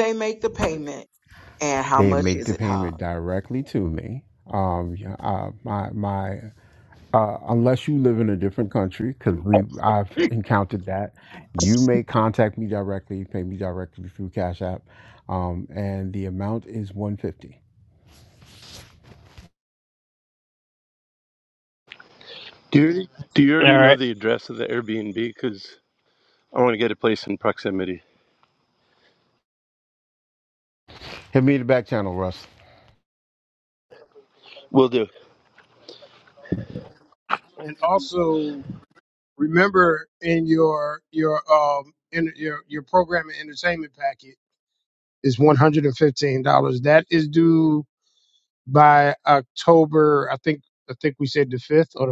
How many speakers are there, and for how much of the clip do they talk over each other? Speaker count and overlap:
4, about 3%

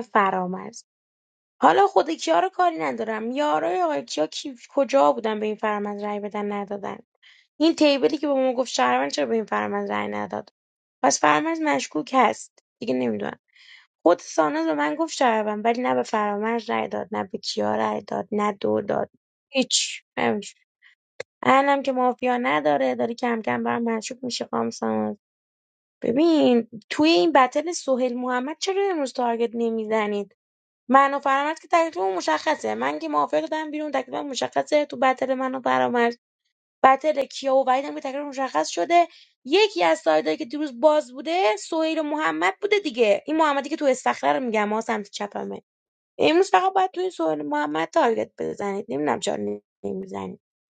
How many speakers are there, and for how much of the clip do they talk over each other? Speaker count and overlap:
1, no overlap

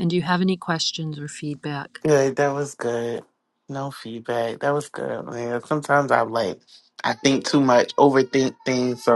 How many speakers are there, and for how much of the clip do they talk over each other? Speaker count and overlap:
2, no overlap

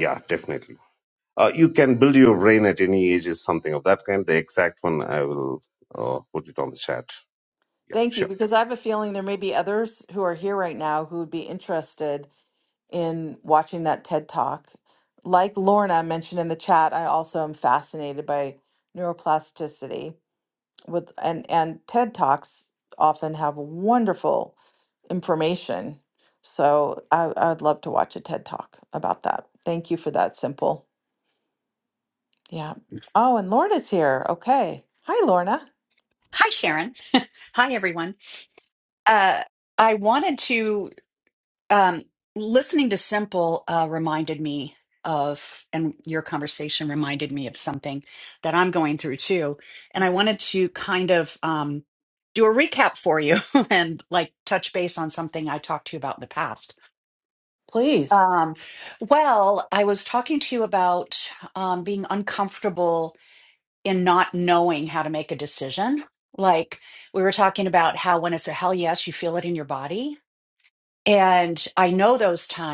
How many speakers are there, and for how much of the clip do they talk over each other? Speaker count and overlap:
3, under 1%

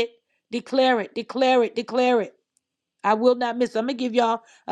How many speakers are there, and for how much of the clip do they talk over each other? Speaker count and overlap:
1, no overlap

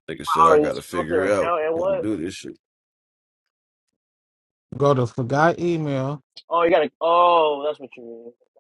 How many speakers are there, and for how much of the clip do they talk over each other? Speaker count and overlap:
3, about 21%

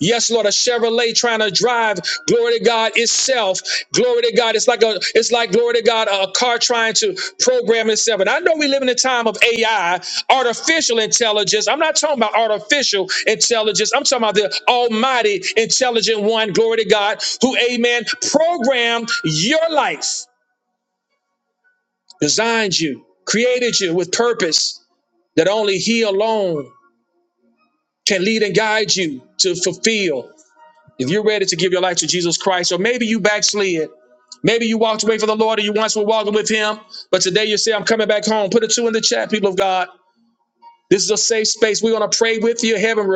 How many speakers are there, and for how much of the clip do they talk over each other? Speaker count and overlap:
1, no overlap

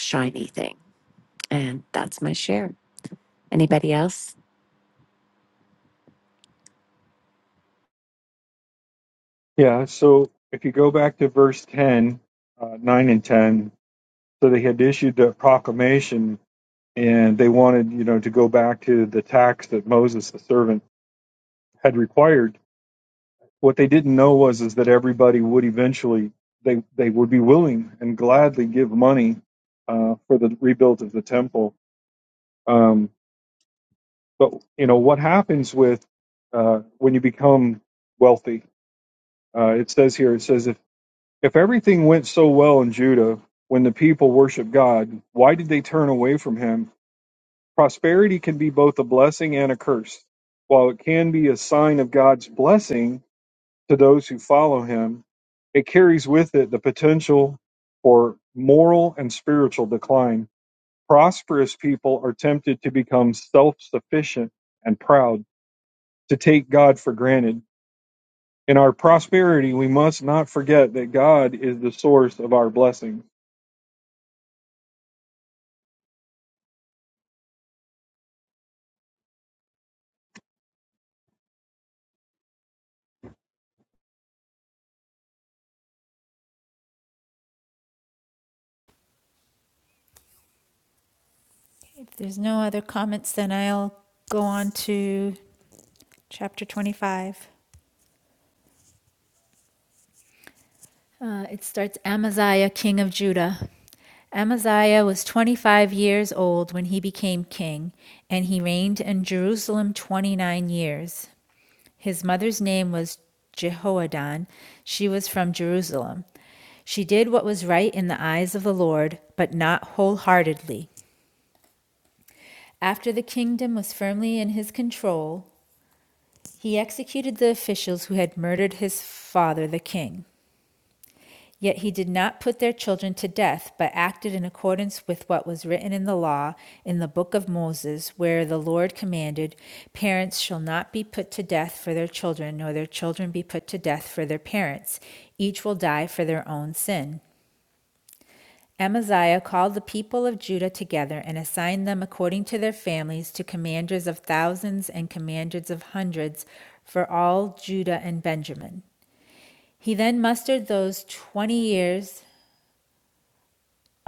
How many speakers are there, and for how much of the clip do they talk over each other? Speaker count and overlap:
3, no overlap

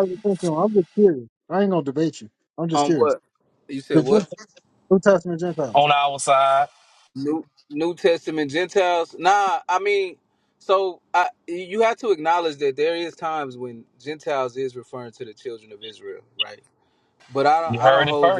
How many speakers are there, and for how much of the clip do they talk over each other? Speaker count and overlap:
3, about 7%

